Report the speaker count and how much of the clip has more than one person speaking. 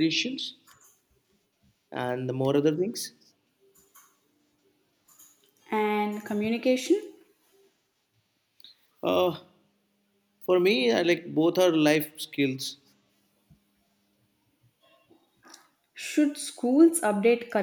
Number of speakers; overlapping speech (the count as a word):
two, no overlap